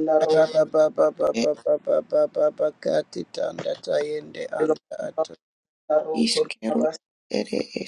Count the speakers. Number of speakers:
3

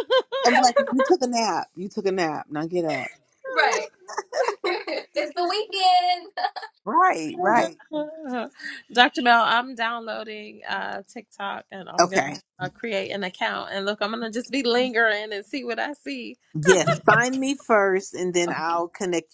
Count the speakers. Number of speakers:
3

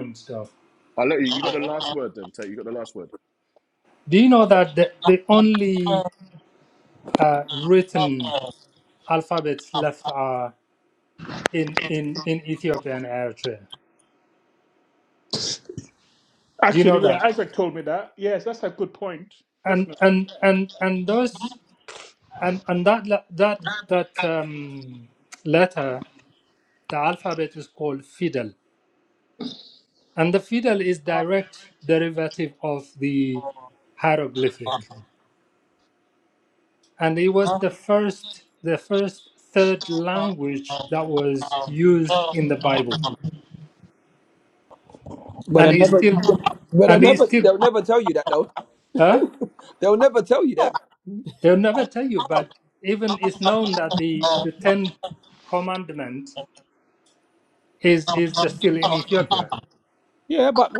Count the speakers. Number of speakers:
4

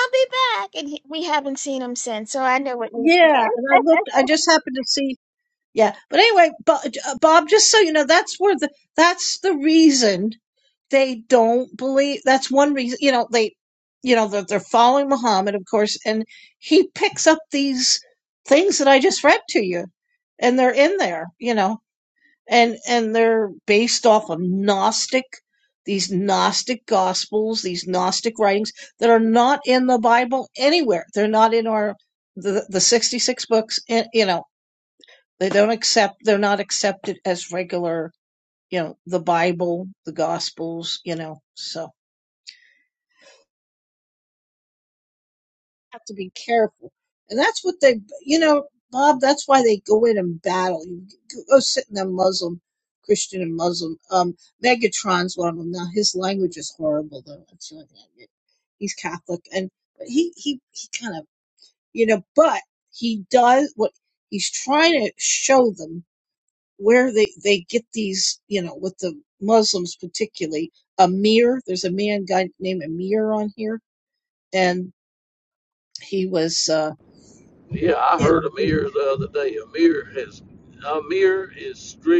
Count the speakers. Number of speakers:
3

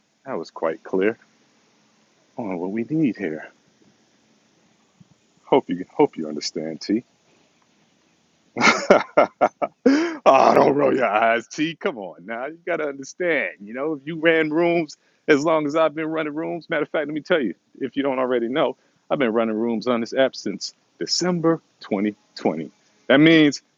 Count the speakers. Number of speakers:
1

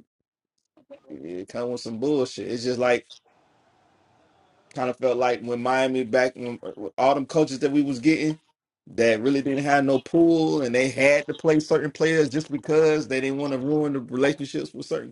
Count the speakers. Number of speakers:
1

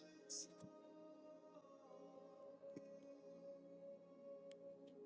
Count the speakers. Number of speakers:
0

